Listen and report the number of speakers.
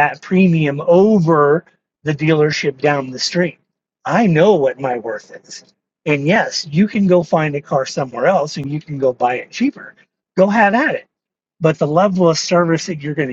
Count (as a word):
one